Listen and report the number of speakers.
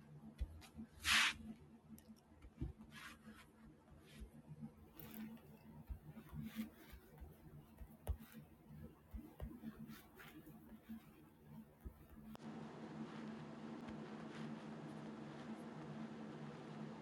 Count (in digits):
0